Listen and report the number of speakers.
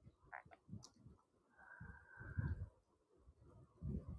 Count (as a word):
zero